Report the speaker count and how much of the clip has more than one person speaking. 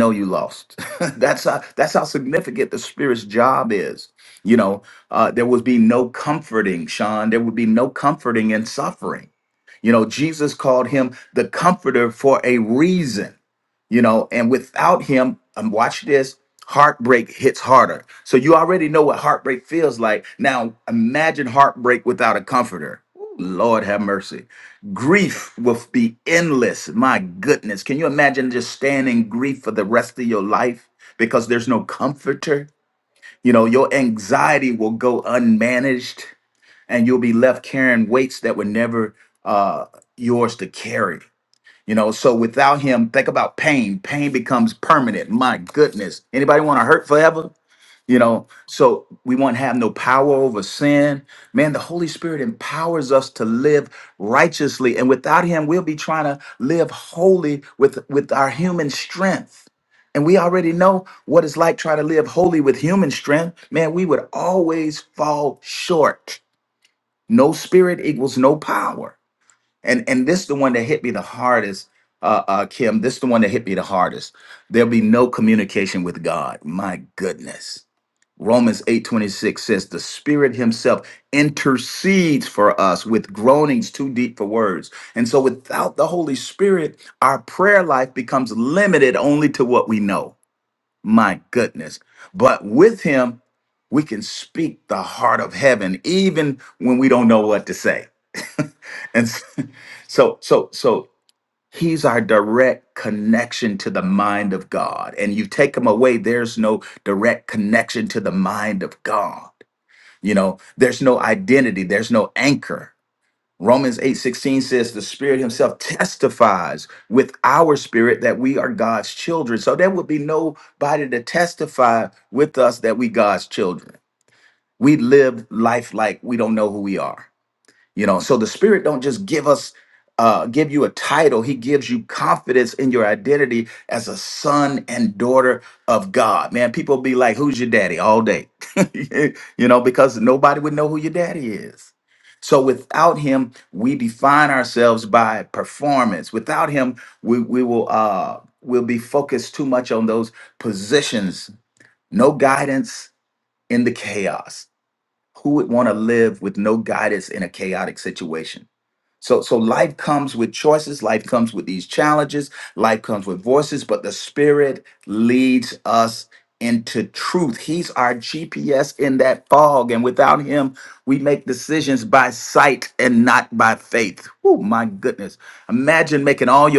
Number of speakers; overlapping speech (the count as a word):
one, no overlap